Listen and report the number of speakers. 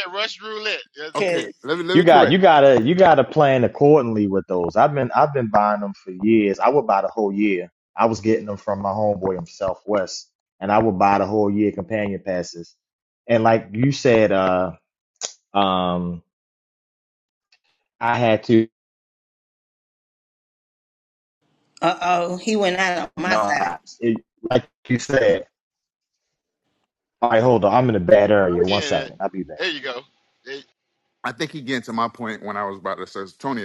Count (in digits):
4